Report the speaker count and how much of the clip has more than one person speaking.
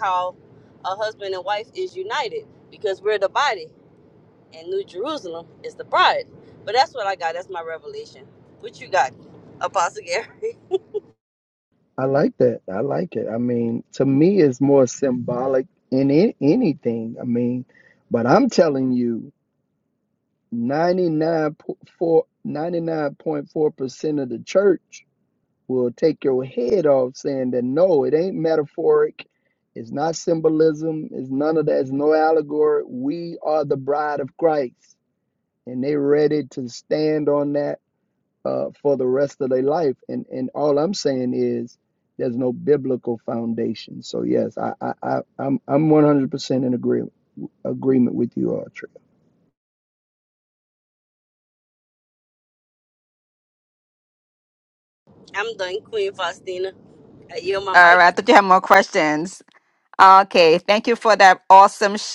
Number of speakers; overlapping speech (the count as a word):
three, under 1%